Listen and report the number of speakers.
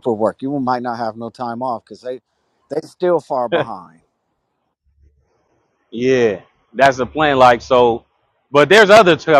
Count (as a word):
two